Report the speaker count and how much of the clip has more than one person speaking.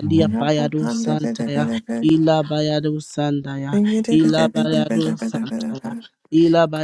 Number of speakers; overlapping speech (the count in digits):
2, about 51%